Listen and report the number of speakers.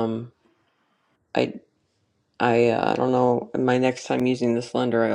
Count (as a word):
one